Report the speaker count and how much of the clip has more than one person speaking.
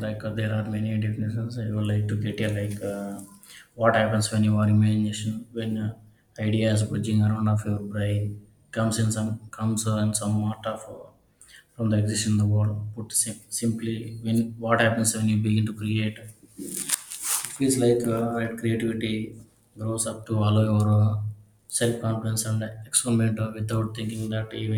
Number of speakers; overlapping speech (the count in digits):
1, no overlap